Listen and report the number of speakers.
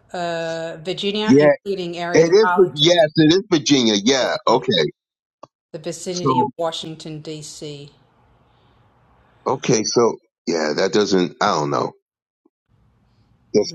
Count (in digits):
2